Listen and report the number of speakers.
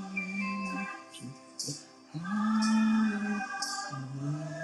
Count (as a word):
zero